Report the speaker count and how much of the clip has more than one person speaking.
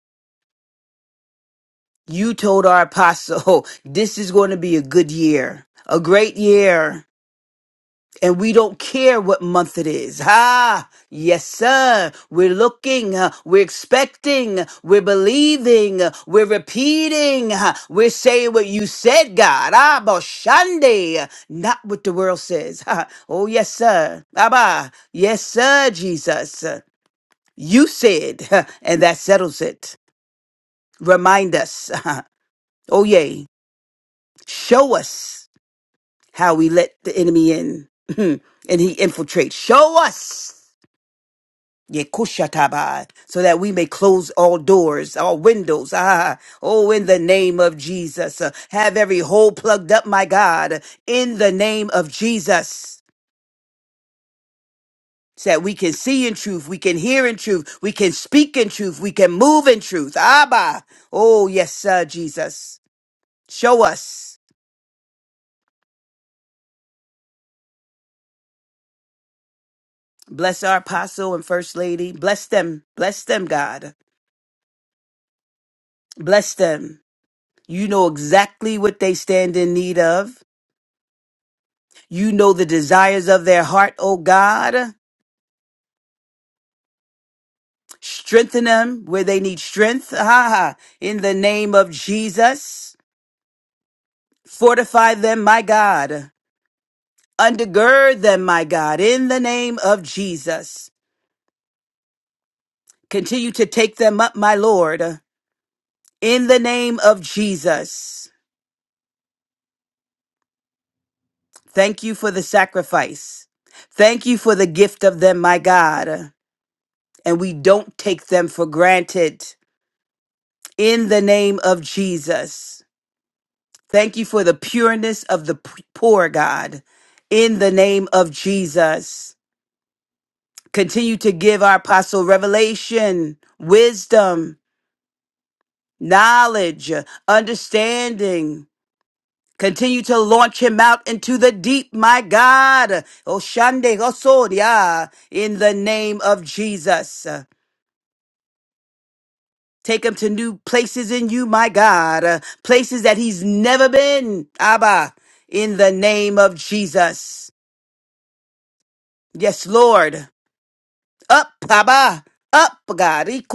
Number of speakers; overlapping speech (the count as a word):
one, no overlap